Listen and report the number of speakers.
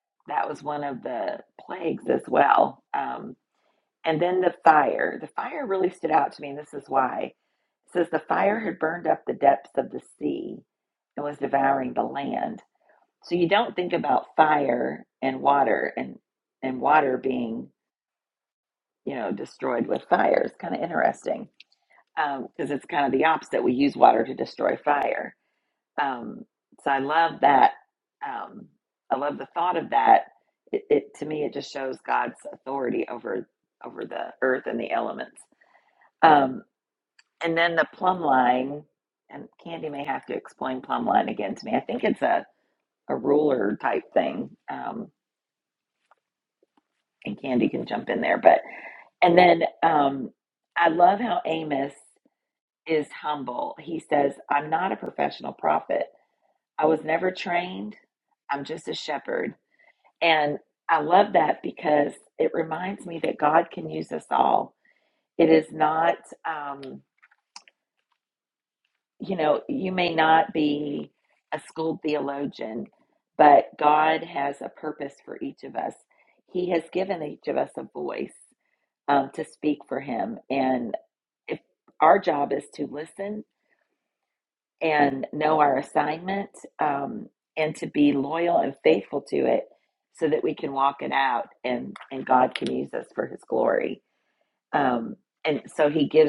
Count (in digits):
1